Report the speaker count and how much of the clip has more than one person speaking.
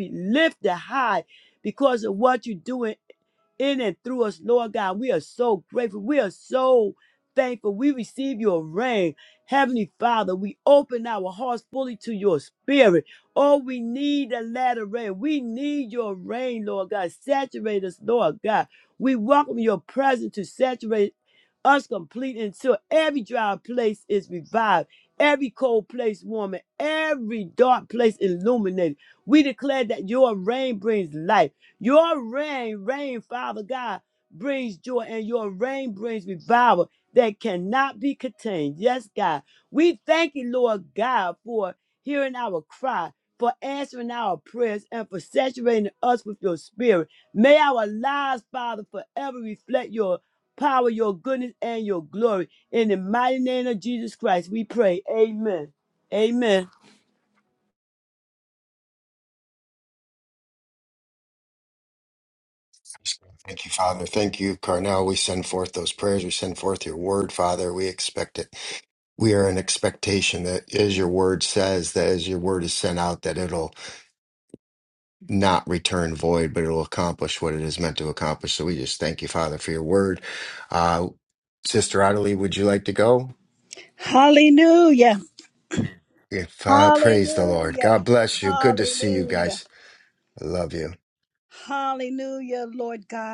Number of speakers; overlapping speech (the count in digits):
3, about 2%